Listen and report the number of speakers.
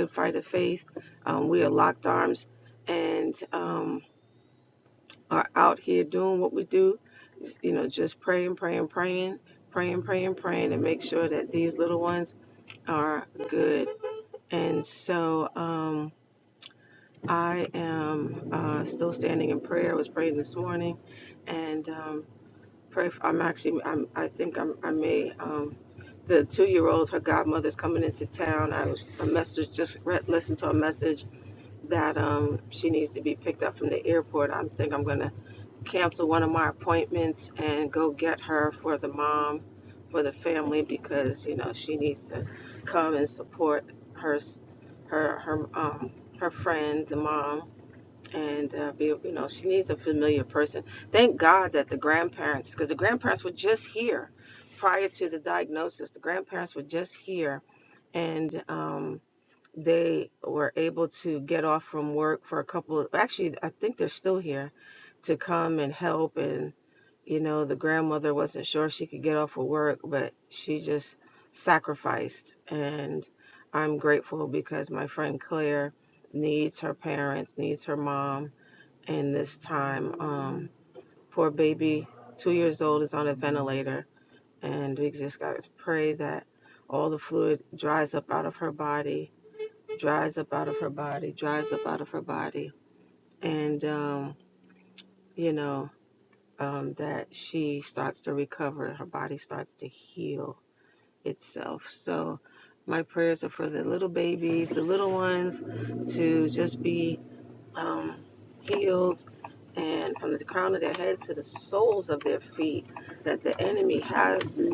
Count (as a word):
one